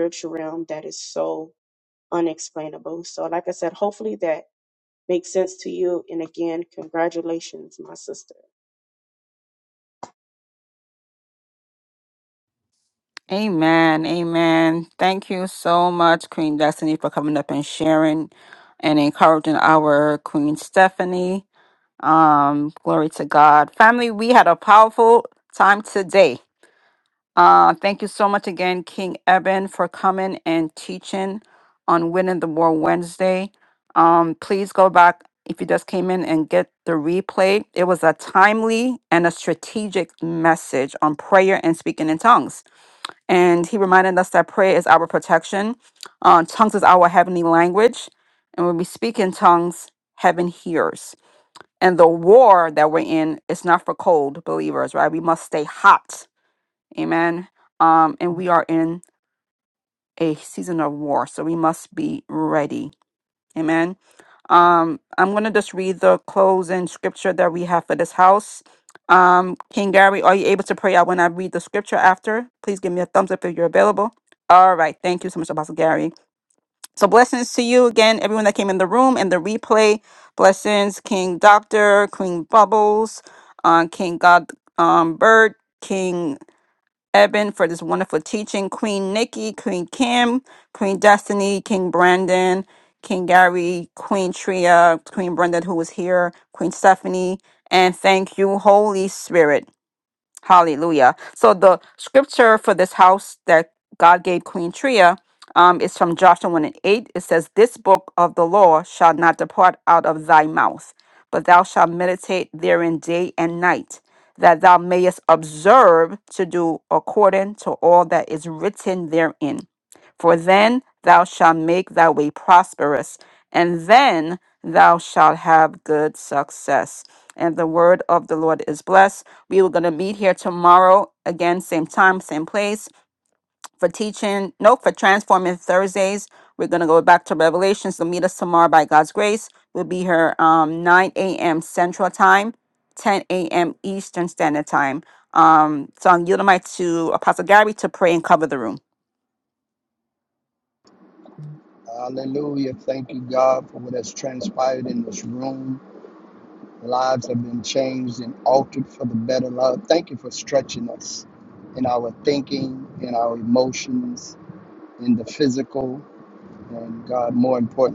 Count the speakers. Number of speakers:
3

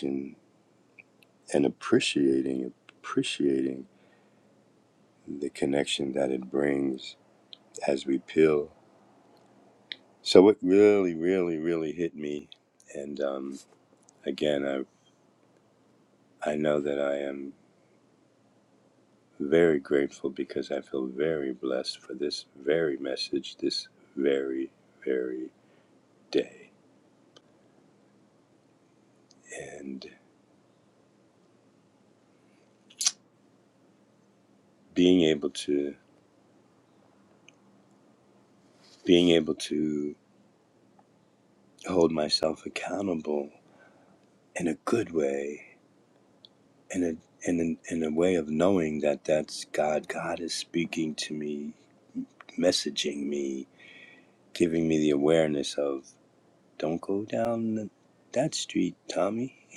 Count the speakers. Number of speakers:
1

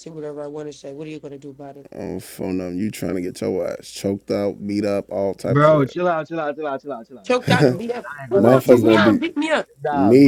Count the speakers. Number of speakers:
3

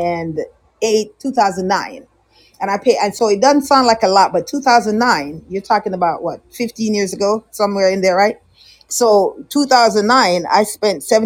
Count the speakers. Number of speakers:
1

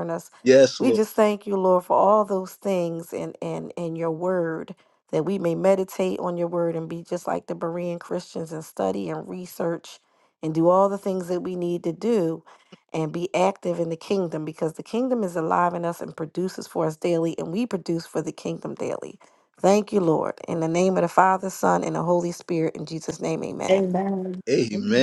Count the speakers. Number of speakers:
3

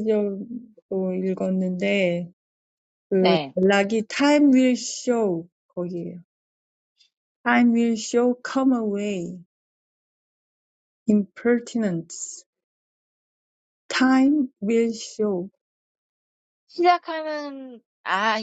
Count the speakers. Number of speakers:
2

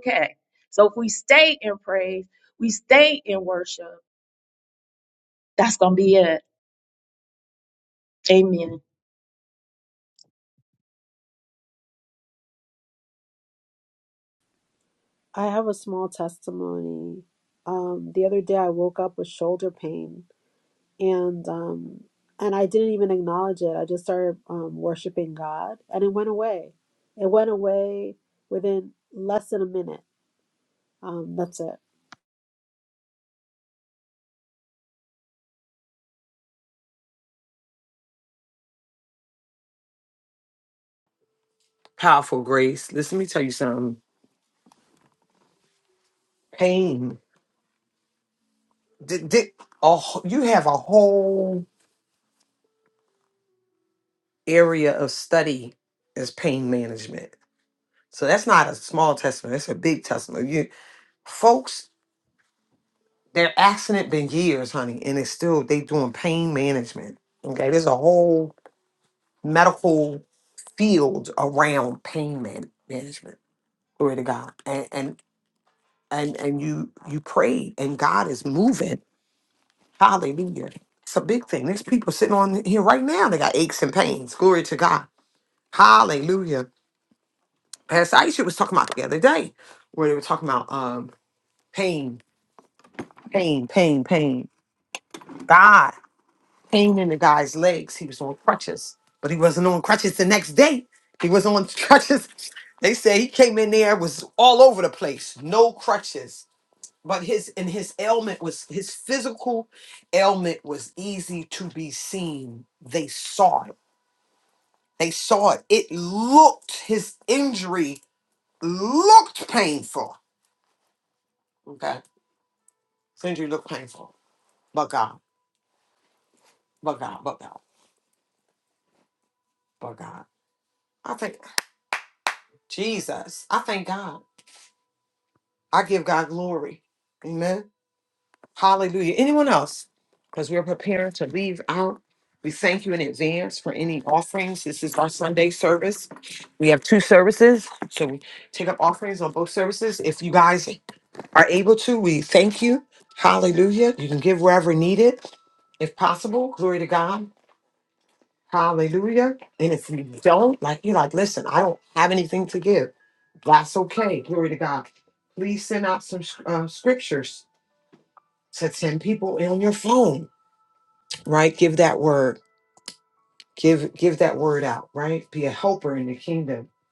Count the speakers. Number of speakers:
3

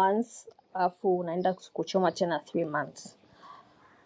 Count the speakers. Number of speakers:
1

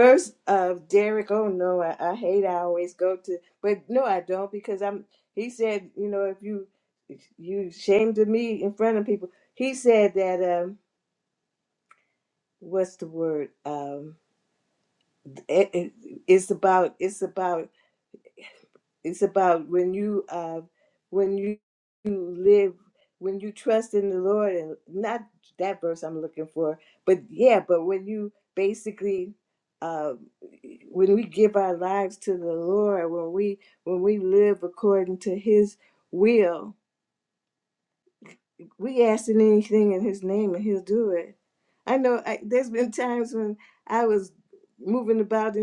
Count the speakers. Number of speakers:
1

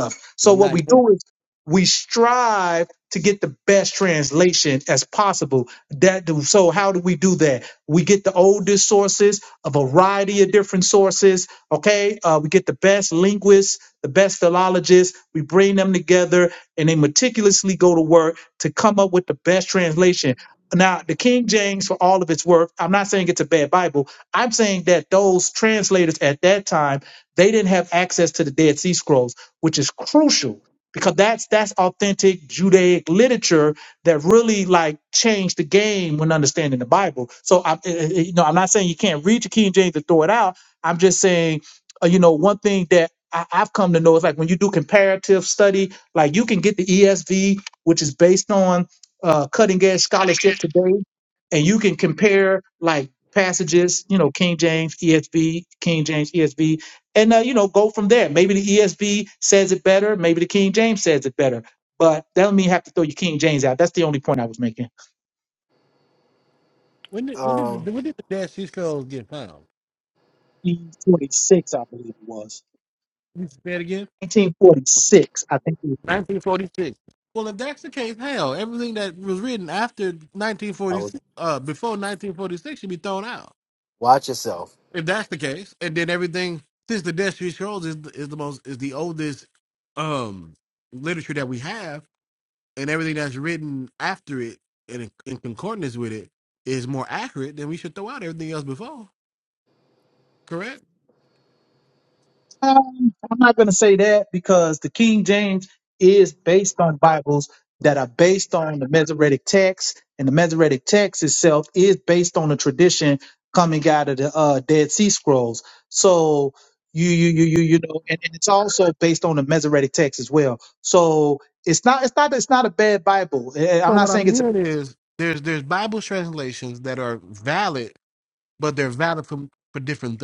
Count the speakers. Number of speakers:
3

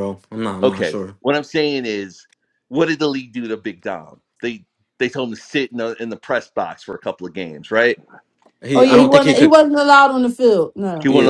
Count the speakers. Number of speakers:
3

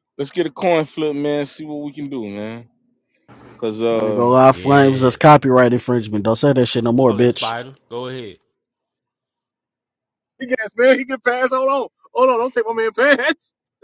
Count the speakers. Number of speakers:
4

